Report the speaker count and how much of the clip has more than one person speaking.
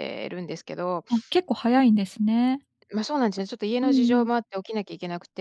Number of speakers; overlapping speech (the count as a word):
two, about 9%